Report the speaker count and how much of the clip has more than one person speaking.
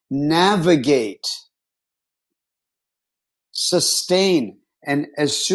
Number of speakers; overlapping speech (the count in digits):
1, no overlap